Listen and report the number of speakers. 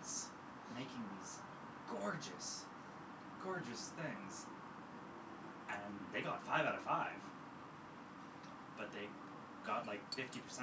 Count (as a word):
one